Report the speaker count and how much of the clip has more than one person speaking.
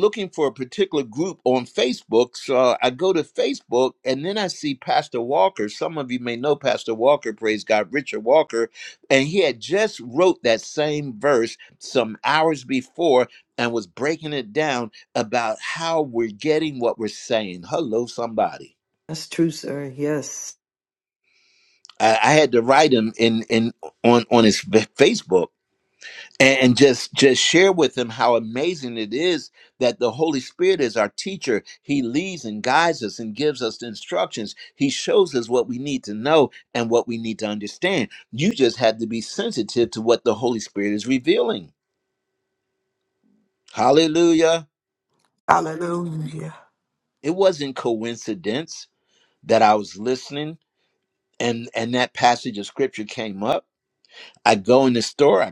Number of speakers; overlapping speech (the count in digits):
3, no overlap